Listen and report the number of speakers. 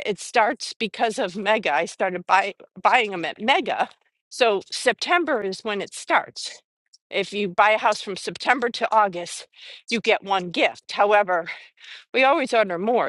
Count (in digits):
1